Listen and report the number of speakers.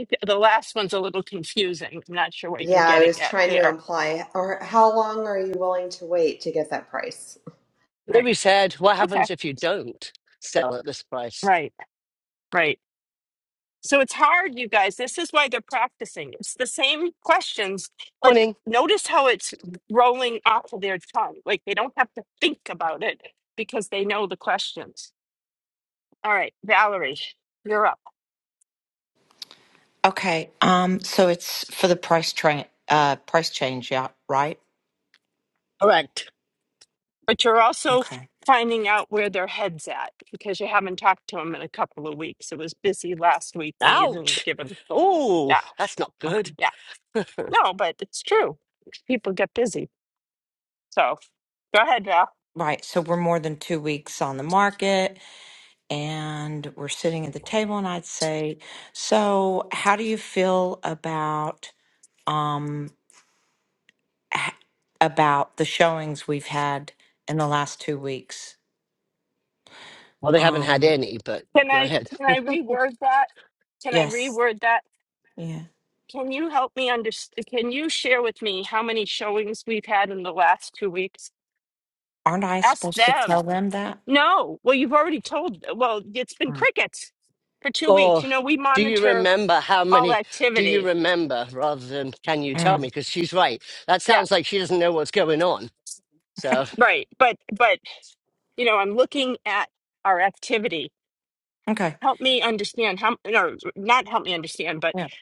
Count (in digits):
4